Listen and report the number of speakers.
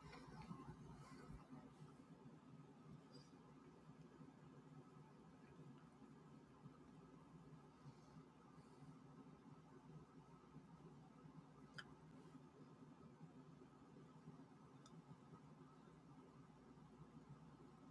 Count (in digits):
0